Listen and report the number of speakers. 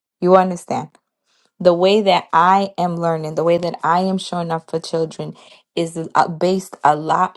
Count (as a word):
one